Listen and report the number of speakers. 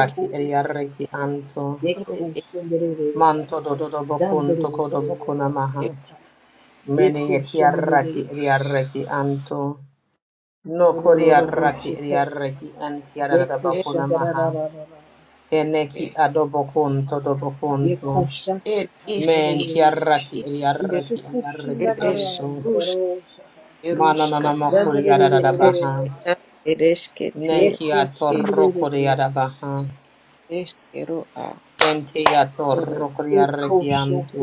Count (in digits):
3